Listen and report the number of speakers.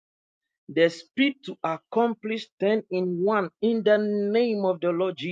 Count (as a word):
one